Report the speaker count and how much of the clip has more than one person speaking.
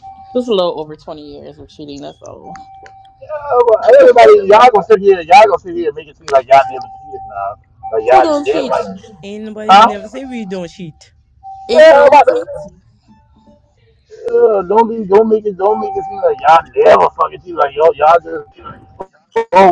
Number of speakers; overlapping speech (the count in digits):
3, about 8%